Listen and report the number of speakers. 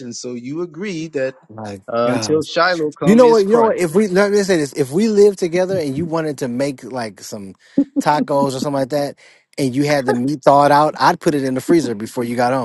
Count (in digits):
2